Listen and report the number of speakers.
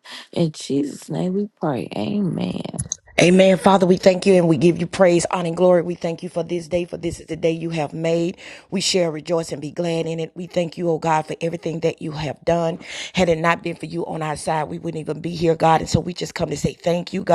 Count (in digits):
2